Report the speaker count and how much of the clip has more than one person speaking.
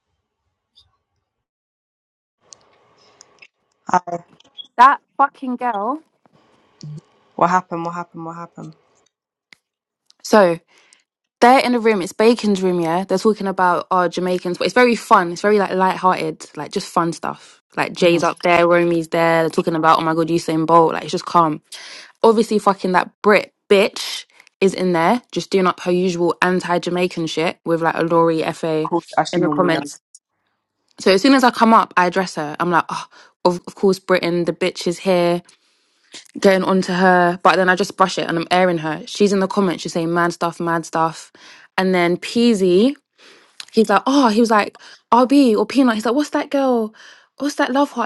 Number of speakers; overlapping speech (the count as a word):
two, about 2%